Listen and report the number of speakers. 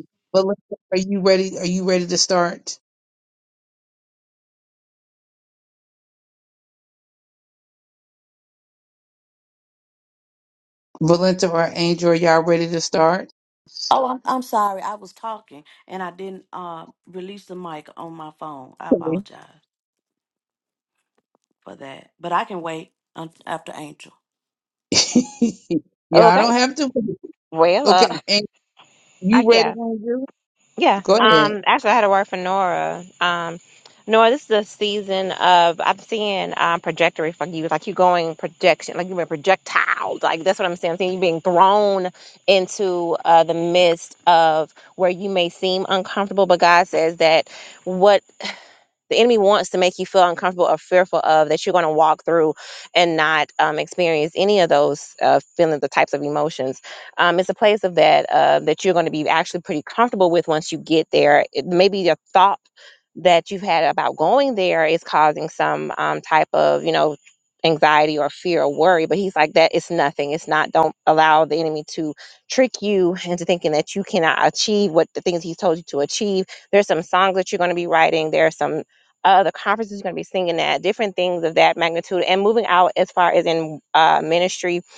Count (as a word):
three